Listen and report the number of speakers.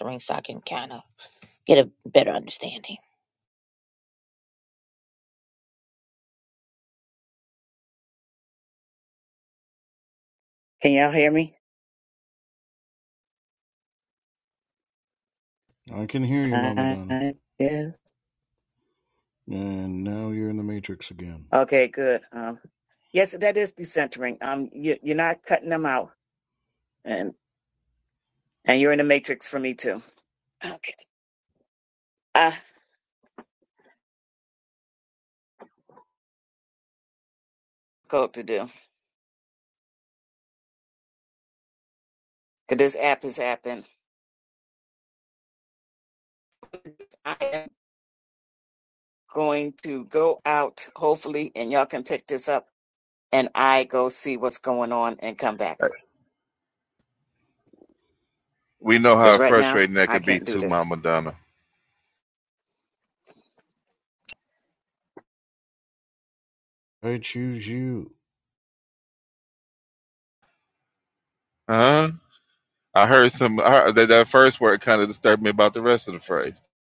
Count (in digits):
4